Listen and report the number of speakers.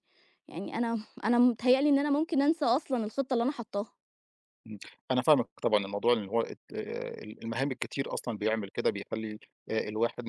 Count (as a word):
two